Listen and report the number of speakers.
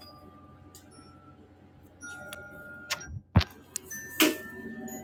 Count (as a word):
zero